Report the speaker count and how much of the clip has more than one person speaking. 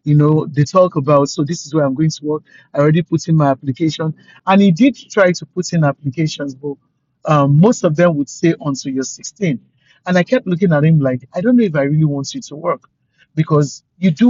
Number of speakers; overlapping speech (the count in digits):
1, no overlap